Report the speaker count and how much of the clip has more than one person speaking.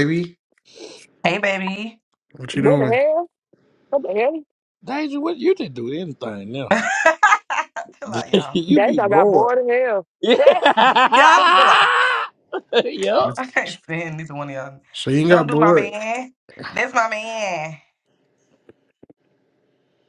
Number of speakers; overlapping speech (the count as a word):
four, about 9%